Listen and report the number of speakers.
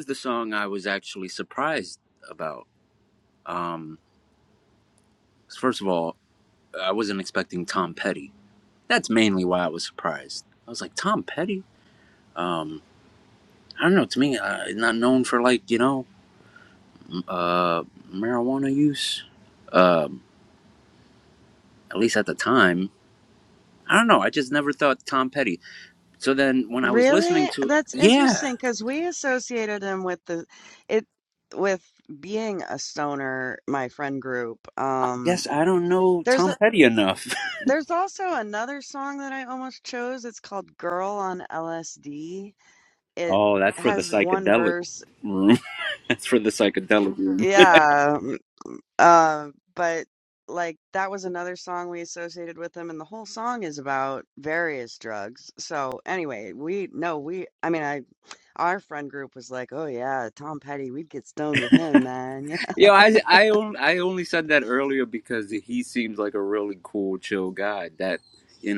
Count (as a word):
two